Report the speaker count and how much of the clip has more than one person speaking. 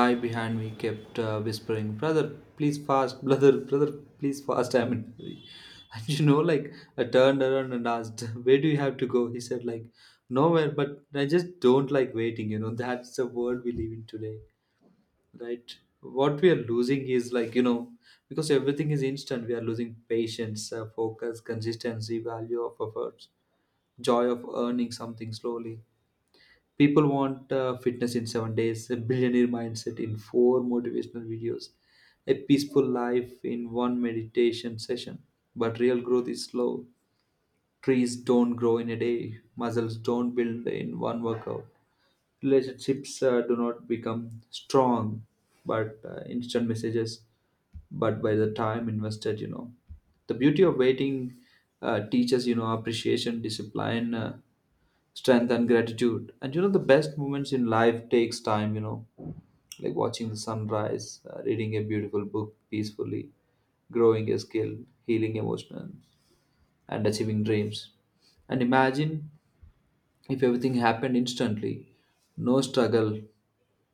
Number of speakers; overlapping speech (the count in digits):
1, no overlap